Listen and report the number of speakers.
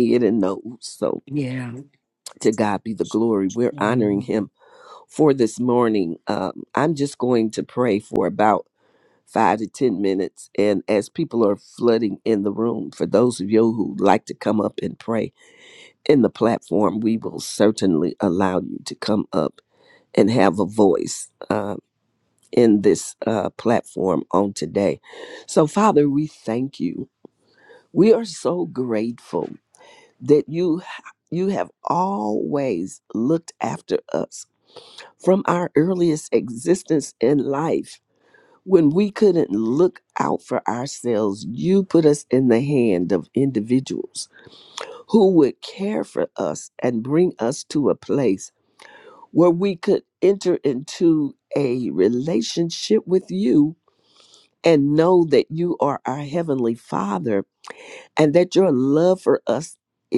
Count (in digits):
2